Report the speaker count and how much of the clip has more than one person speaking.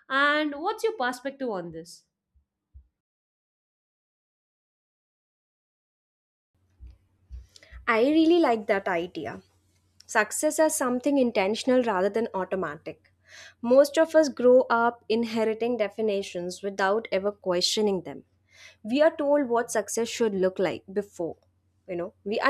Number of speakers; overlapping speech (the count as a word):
two, no overlap